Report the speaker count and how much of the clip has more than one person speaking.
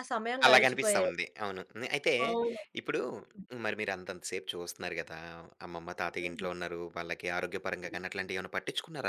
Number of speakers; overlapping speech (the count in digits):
2, about 9%